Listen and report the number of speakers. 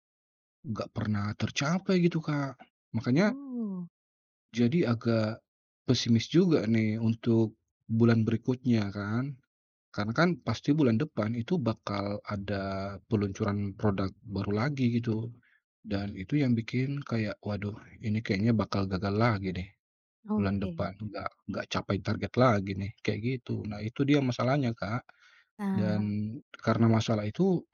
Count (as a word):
two